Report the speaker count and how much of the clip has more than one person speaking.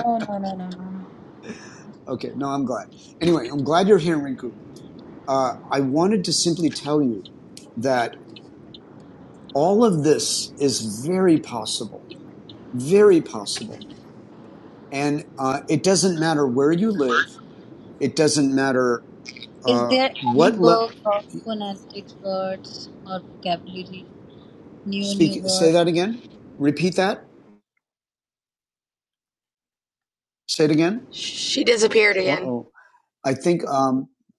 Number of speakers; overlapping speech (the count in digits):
3, about 6%